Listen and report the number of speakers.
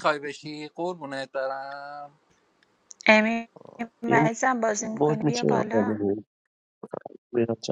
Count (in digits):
3